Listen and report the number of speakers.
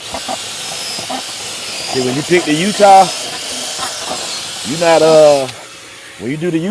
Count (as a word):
one